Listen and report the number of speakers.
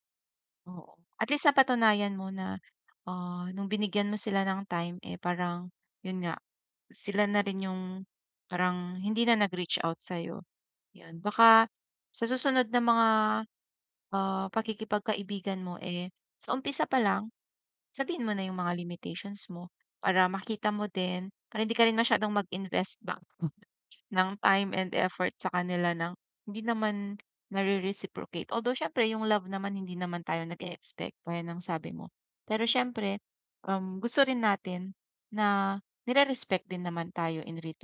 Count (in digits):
1